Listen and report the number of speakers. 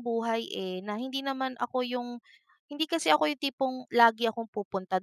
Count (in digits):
1